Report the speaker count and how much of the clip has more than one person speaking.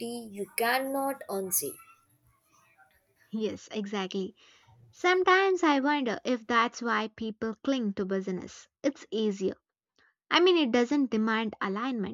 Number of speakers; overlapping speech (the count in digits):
2, no overlap